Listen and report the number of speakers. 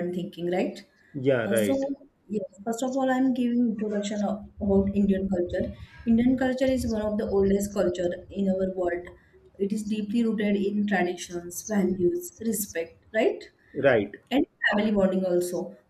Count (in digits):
2